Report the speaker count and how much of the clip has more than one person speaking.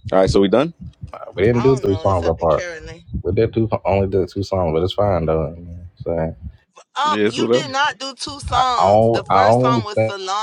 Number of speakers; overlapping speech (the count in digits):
3, about 32%